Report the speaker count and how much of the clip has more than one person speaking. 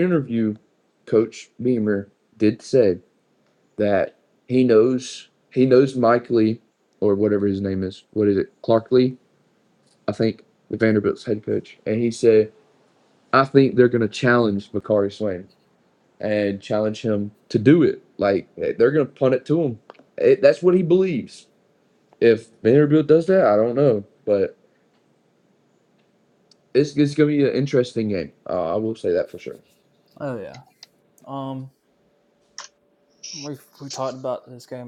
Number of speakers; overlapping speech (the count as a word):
two, no overlap